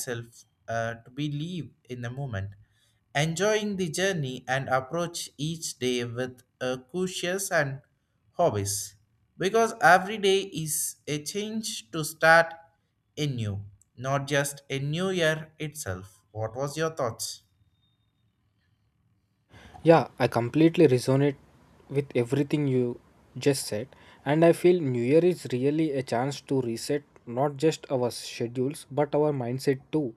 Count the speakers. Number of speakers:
2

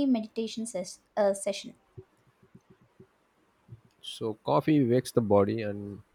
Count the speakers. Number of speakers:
2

